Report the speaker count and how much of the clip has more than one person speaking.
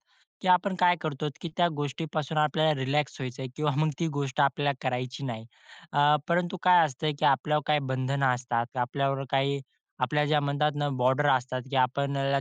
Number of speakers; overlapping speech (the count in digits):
1, no overlap